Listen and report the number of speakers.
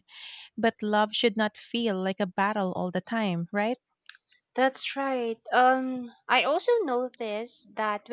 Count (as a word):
two